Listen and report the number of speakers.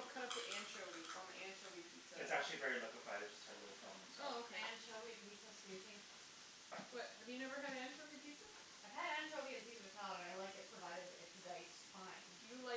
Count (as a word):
three